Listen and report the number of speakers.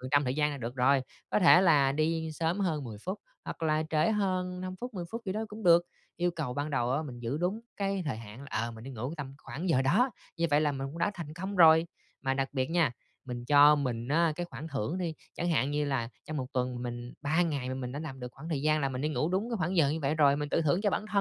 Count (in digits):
1